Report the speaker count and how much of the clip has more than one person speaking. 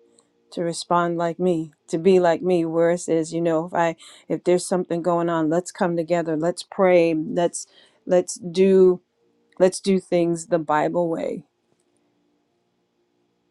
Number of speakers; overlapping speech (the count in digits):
1, no overlap